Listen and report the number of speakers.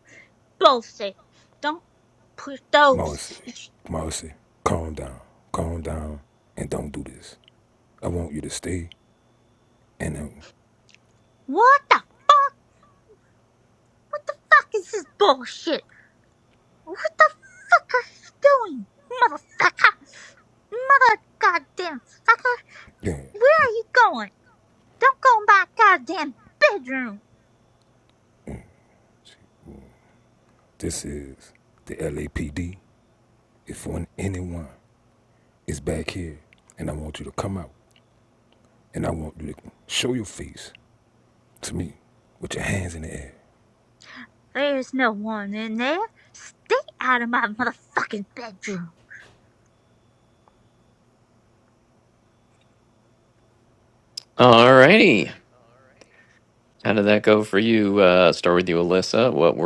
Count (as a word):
three